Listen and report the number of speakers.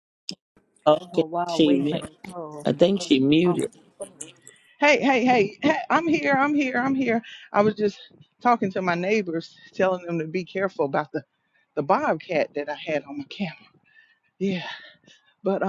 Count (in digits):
3